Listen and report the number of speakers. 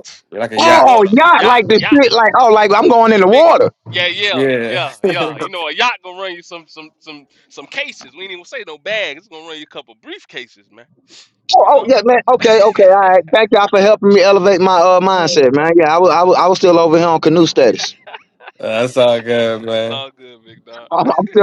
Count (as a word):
three